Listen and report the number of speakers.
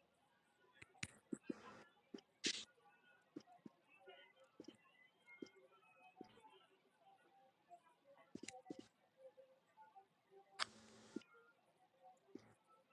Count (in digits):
0